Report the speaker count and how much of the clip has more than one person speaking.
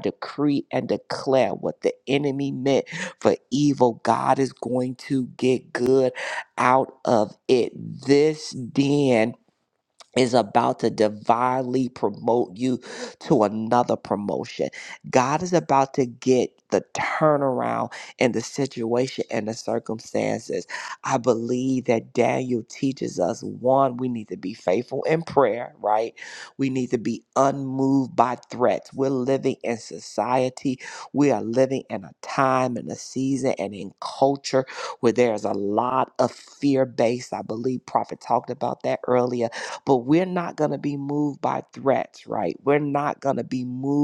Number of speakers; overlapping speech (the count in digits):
1, no overlap